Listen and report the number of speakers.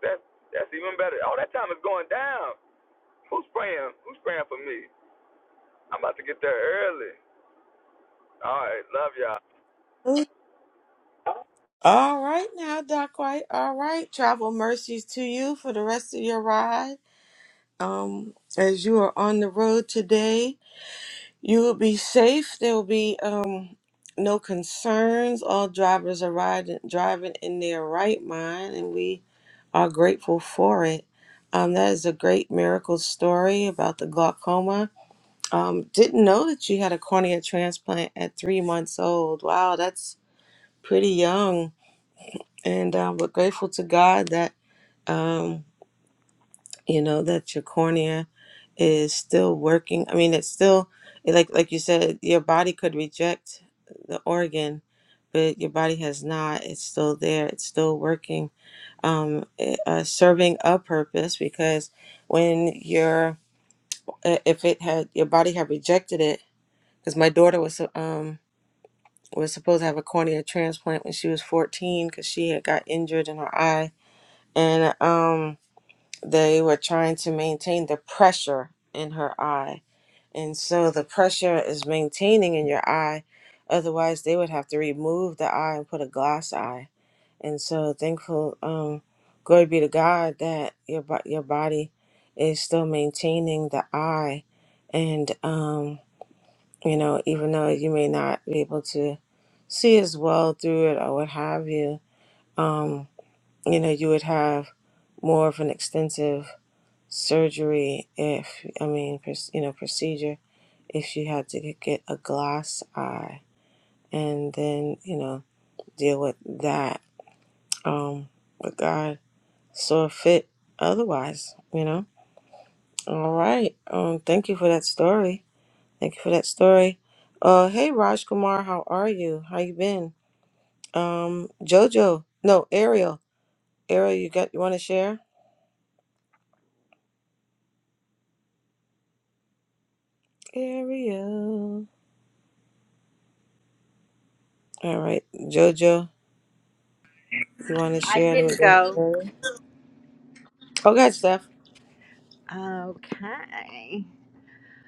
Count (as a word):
three